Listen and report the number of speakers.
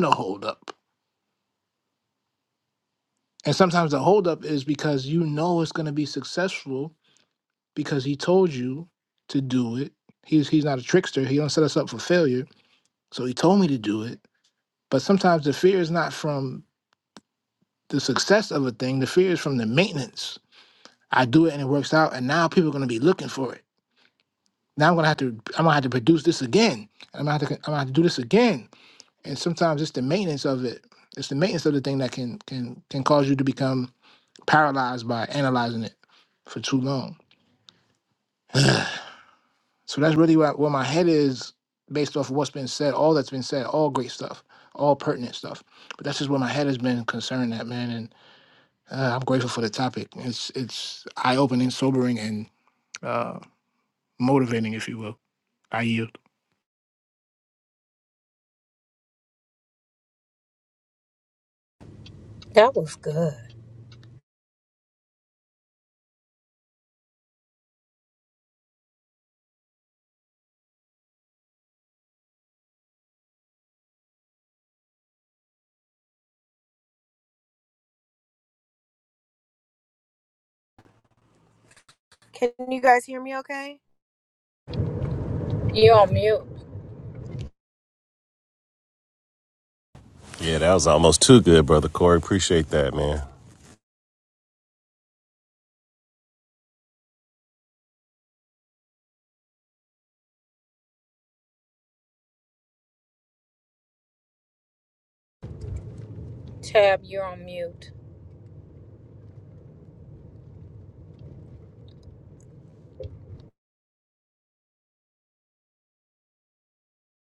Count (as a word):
four